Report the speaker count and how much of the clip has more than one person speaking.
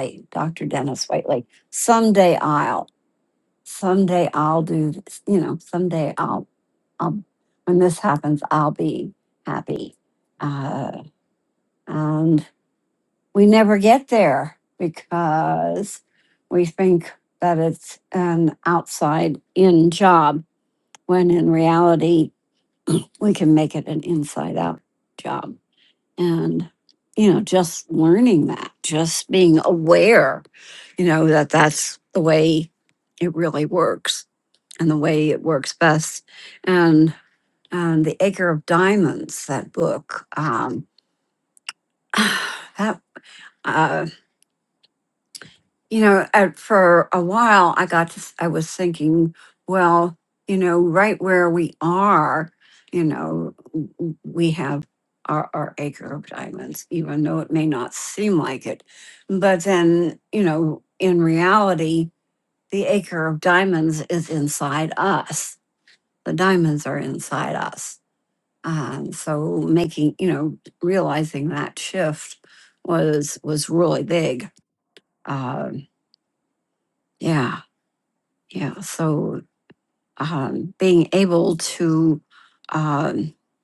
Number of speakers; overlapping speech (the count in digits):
1, no overlap